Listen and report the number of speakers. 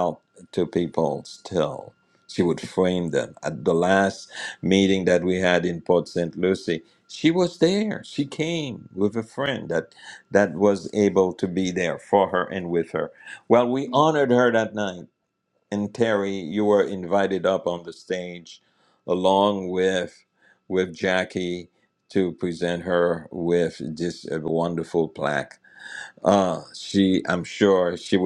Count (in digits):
1